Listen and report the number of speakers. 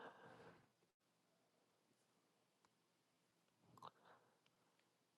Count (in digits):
0